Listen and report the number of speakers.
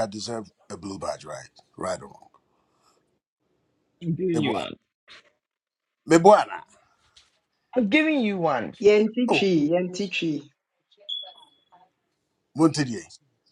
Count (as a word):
three